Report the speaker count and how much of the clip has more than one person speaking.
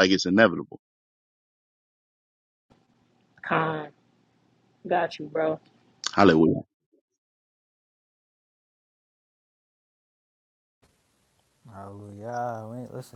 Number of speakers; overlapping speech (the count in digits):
3, no overlap